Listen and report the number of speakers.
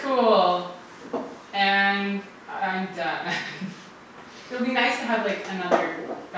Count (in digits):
1